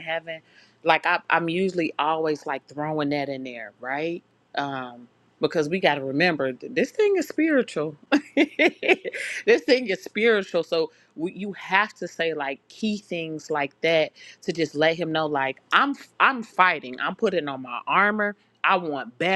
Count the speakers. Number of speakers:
one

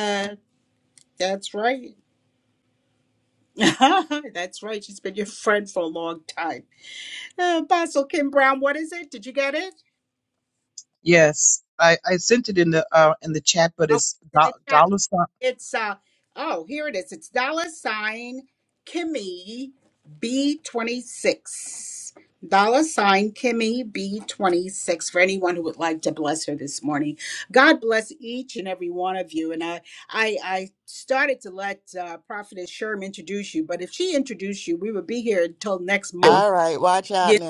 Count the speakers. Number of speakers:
three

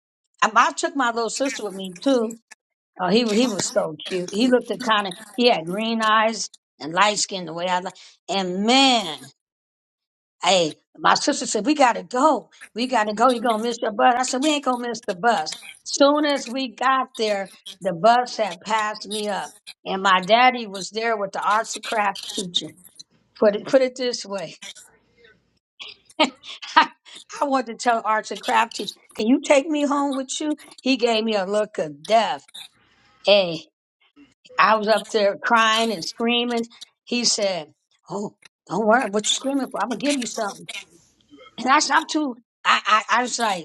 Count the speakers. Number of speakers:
one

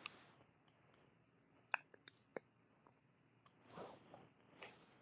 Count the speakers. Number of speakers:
zero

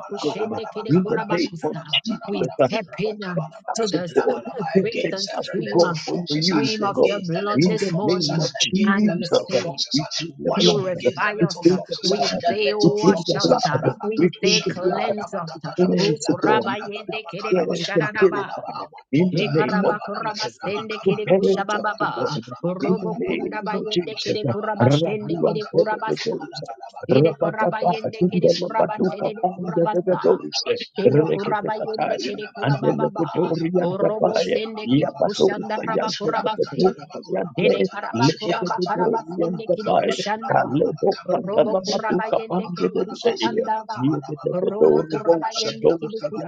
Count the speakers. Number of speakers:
three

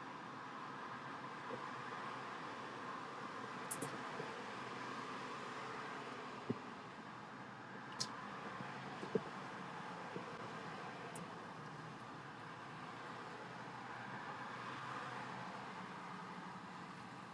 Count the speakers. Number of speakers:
zero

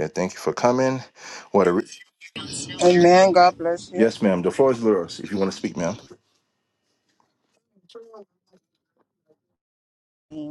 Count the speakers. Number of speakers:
two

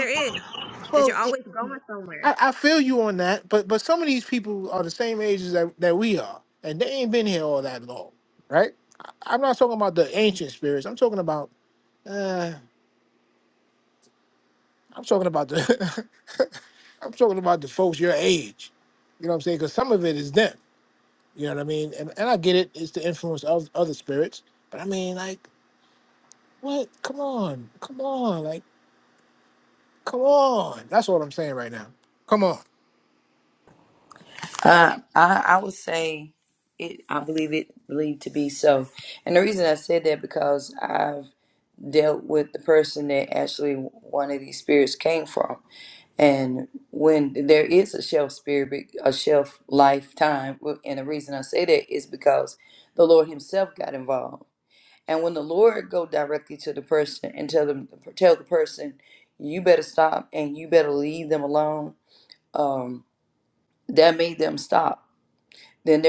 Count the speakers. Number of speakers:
three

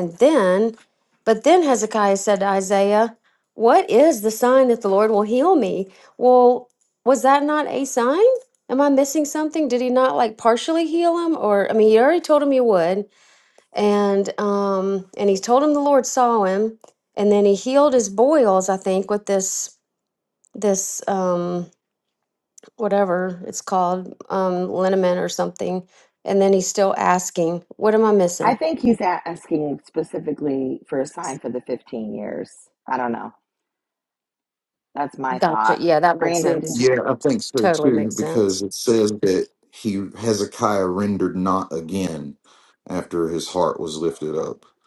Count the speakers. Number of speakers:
three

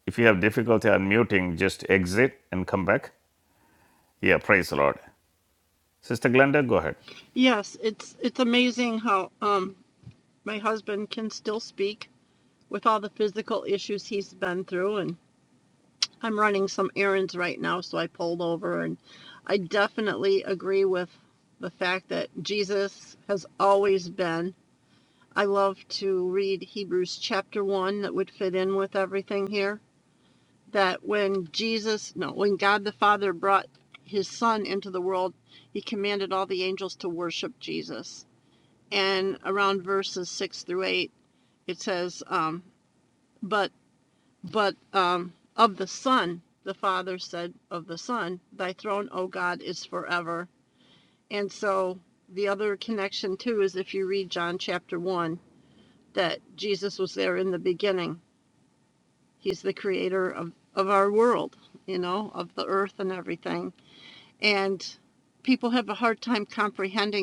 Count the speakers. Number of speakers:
two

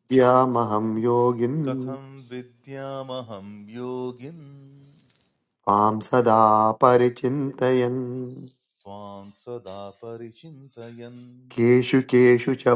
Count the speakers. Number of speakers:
two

